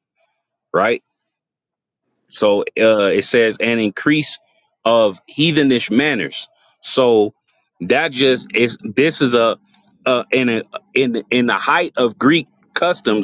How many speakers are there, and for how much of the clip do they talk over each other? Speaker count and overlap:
1, no overlap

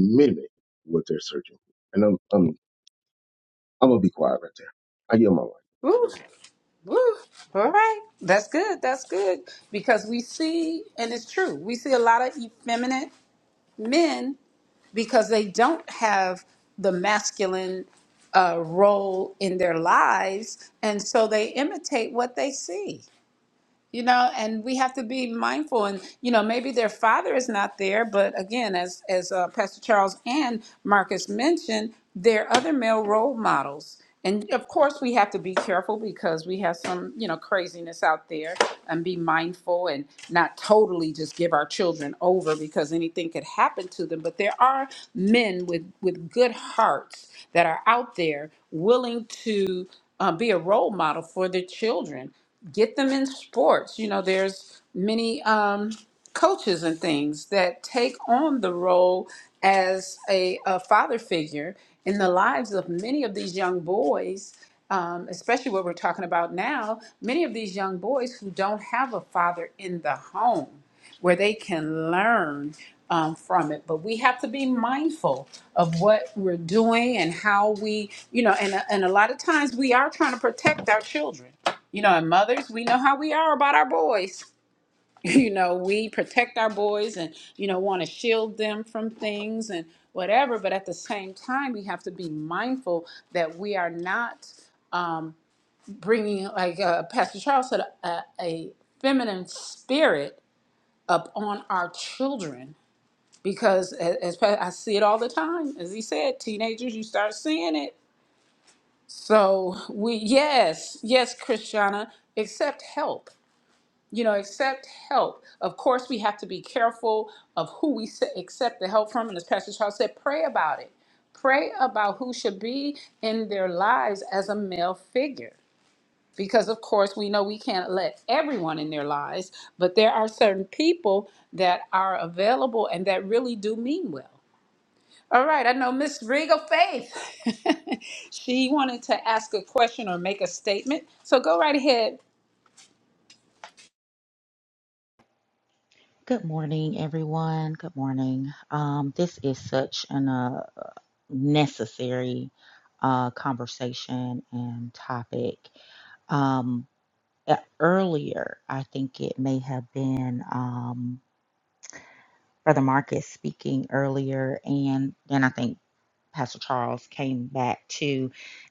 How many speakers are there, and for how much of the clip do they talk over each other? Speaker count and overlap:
3, no overlap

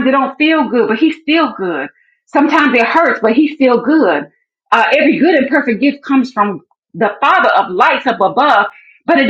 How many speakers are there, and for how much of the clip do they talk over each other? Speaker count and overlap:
1, no overlap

